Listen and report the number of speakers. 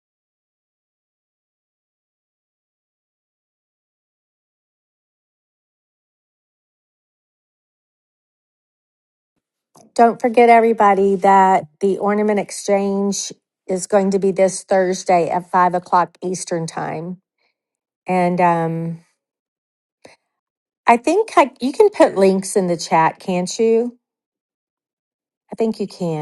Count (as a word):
one